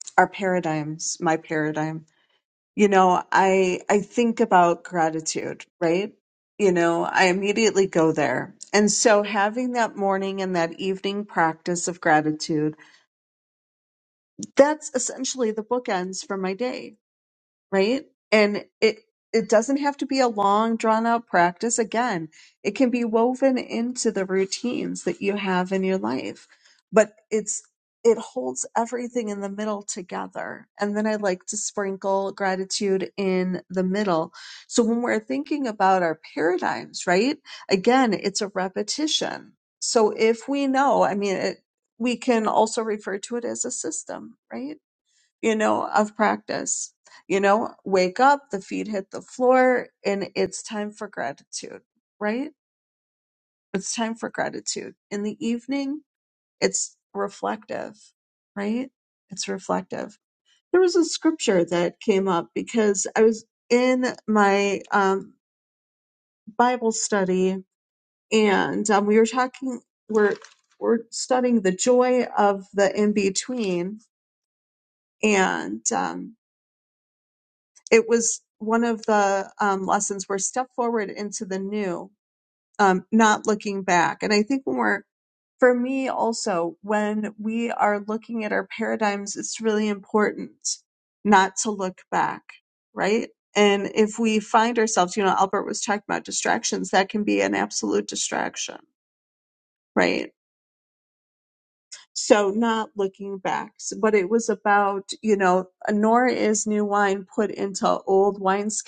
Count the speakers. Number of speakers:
1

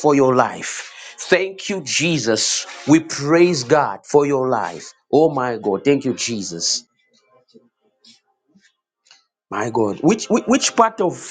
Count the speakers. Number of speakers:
1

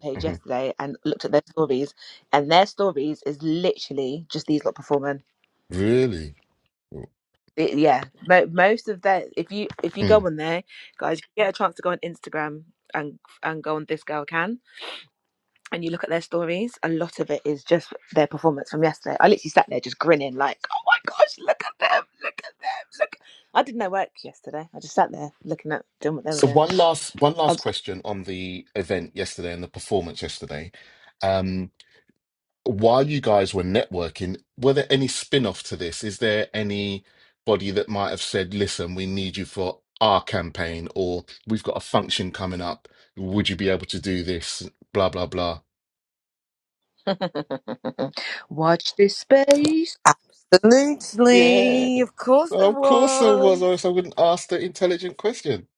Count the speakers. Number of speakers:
3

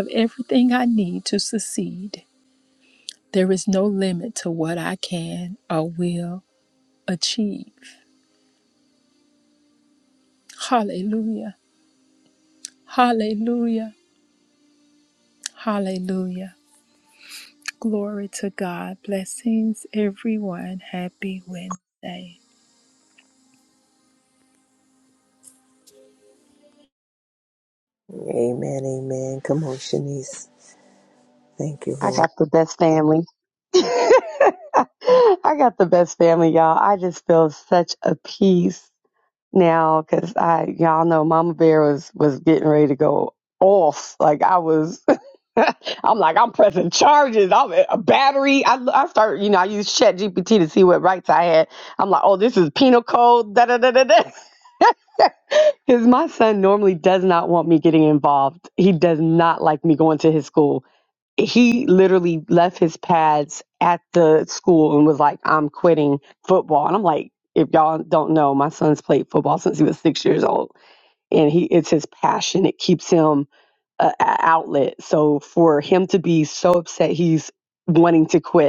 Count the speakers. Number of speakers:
3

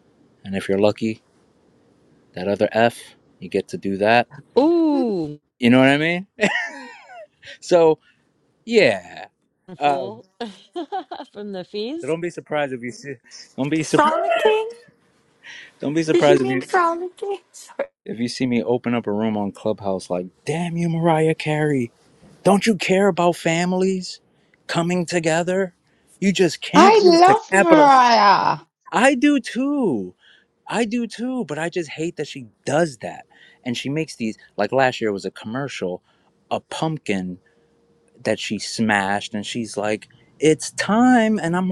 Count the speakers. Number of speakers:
4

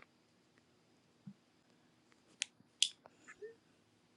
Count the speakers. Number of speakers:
0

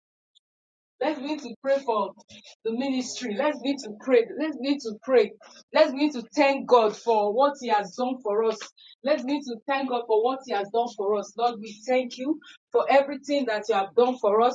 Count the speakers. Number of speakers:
1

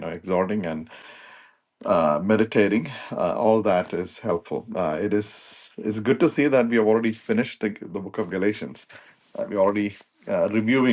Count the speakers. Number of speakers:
1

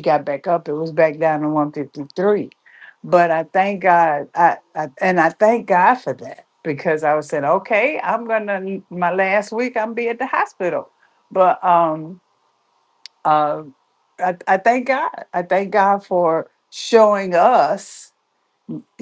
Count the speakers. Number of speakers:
1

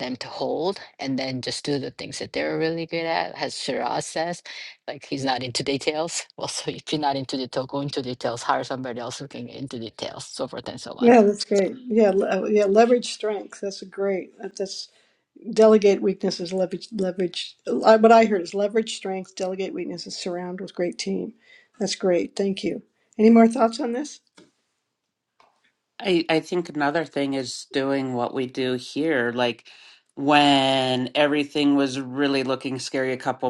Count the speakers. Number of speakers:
3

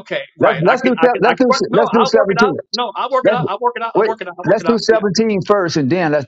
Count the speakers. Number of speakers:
2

